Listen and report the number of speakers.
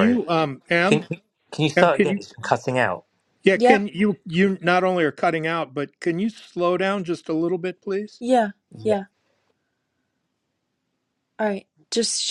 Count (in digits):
3